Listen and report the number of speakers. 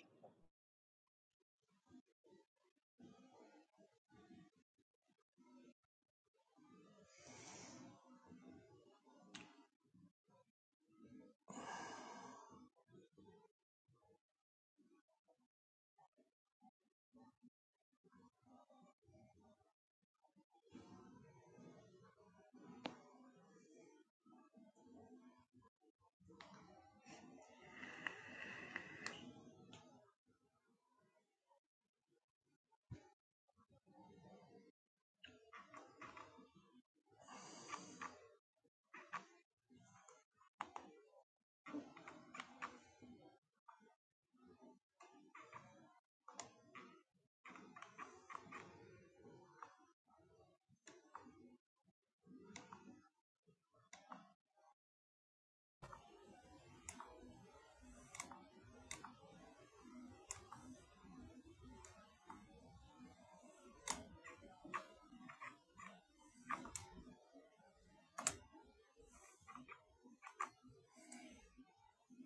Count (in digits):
0